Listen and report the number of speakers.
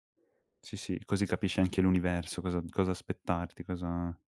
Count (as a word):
one